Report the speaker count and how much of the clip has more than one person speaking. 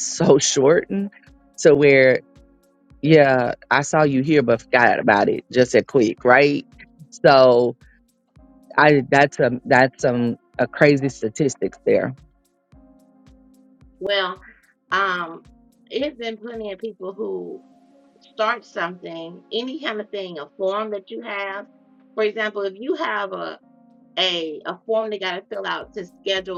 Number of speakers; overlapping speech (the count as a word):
two, no overlap